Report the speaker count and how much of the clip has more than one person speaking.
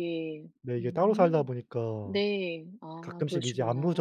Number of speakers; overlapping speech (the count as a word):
two, about 42%